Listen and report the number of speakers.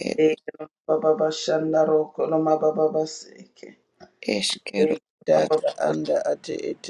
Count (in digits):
3